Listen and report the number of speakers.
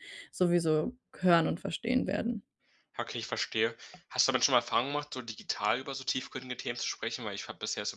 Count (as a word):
two